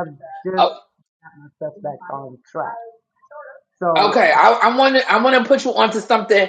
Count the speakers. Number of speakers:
two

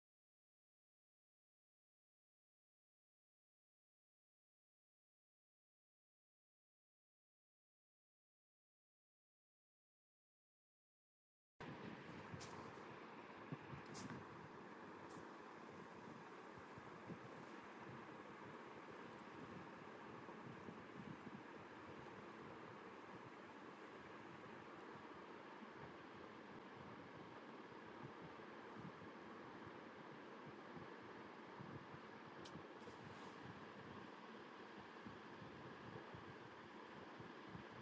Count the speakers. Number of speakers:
zero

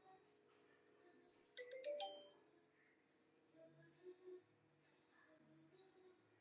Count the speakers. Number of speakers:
zero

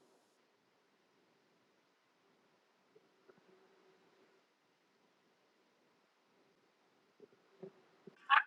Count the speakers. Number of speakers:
zero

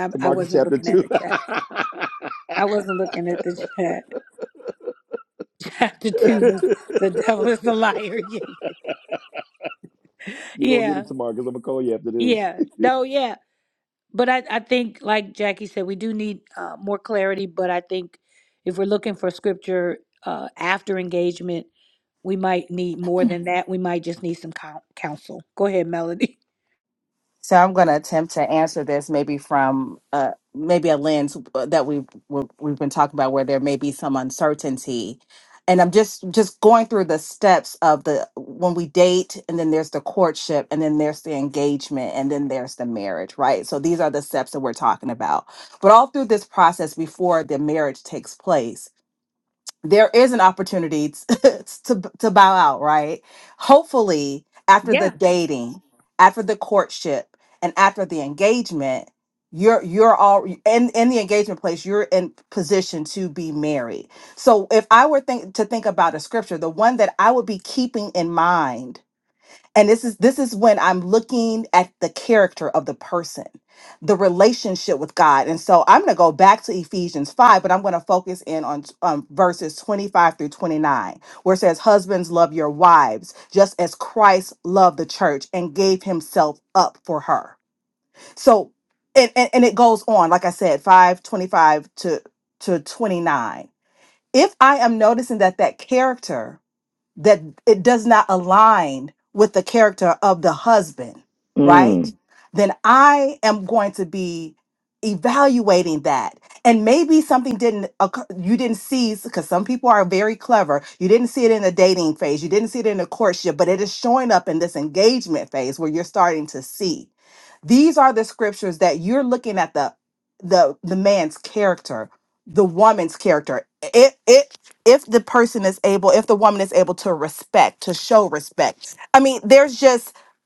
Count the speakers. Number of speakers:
three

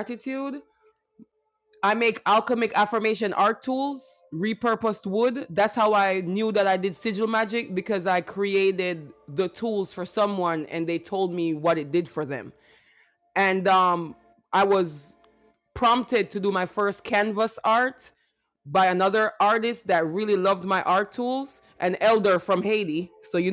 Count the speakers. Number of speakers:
one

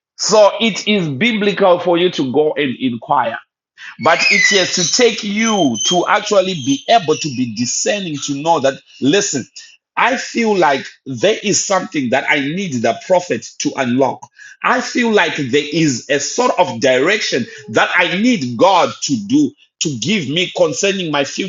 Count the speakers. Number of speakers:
one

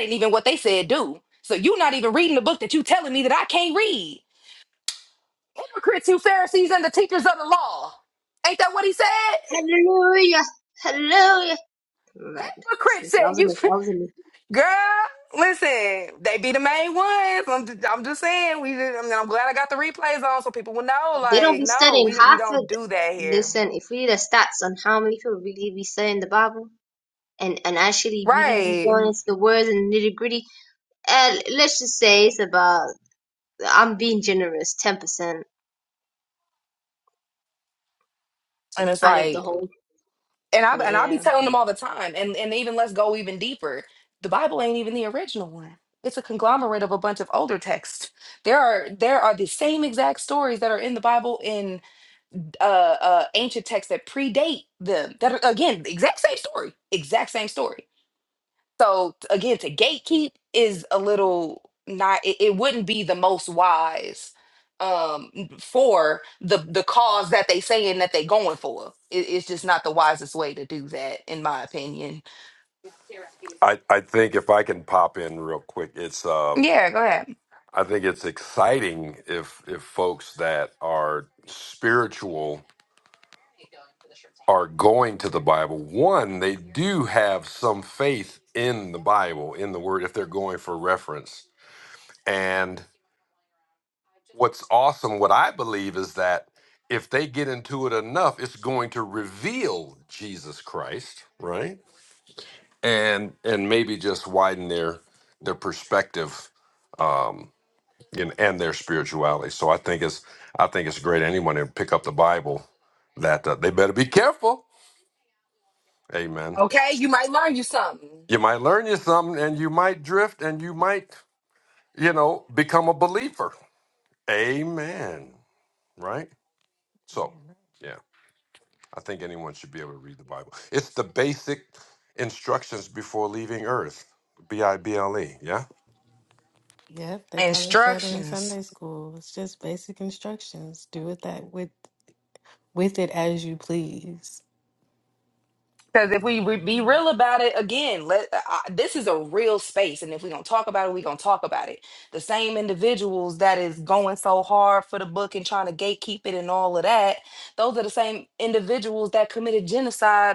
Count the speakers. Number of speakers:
four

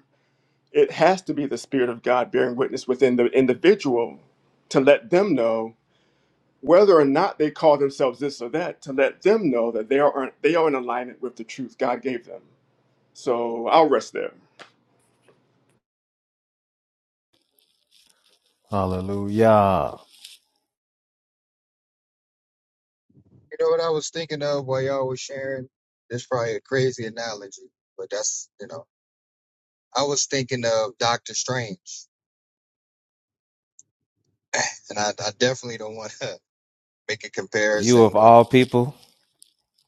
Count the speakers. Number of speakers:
three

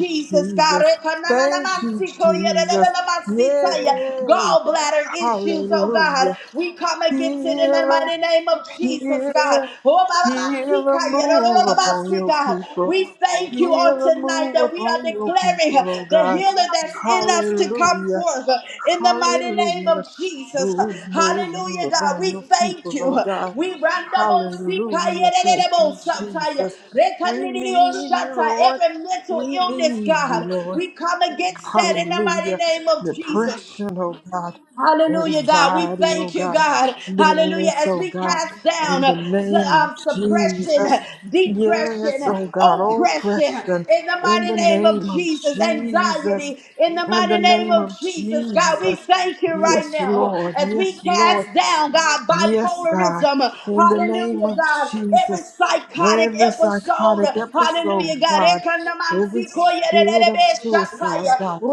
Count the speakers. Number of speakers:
two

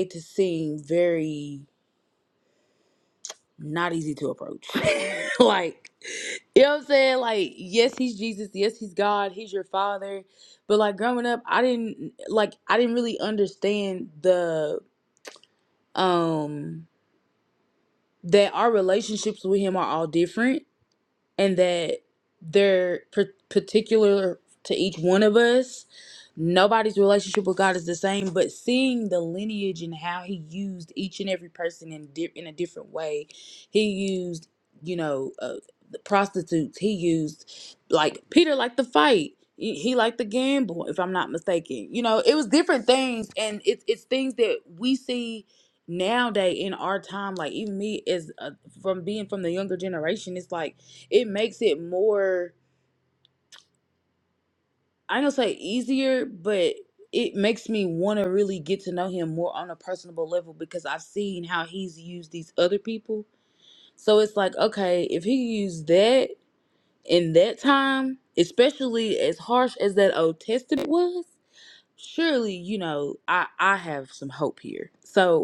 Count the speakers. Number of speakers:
one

